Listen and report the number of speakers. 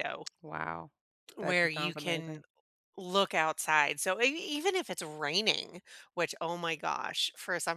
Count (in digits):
2